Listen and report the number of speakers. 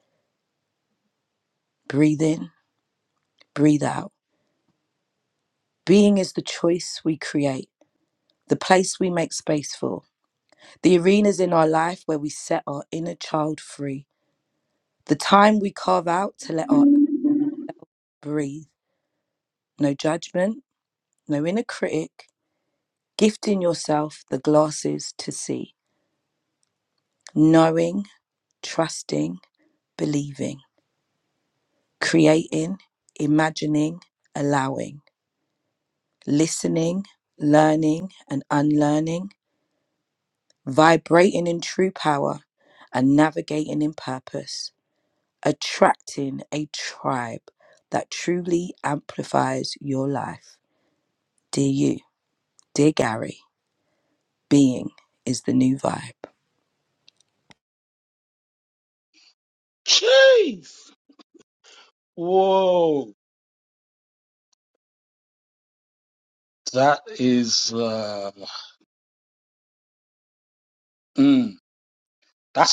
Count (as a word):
two